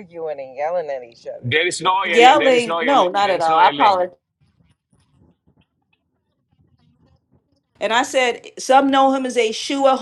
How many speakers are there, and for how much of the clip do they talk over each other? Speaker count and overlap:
three, about 20%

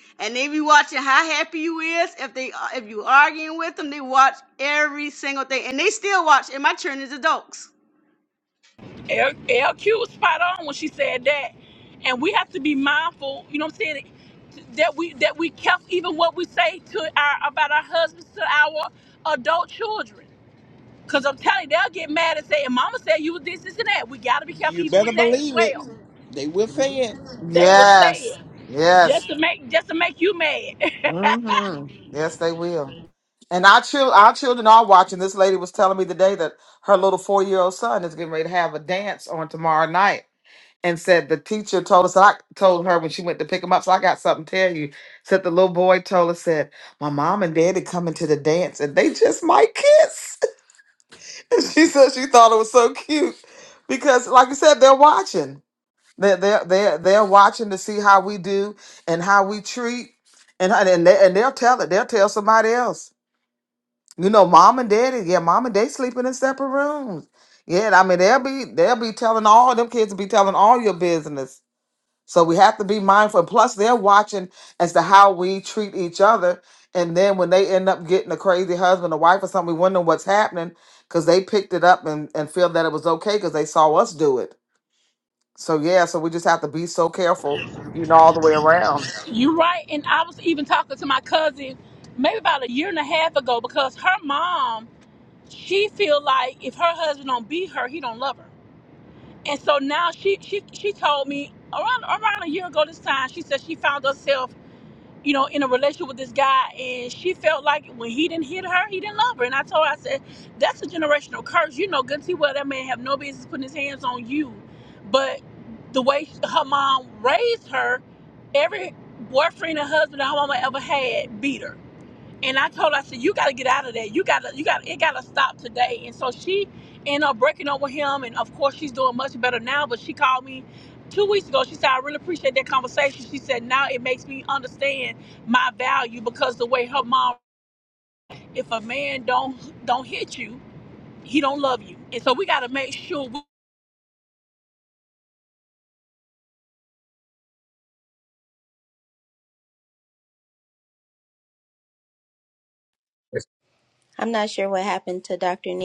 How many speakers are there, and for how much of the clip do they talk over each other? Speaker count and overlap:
five, about 1%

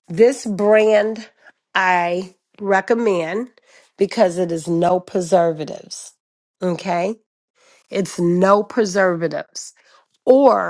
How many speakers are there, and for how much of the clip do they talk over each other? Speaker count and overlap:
one, no overlap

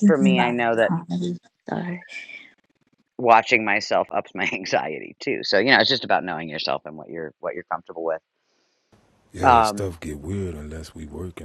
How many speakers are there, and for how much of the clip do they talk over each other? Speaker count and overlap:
three, about 12%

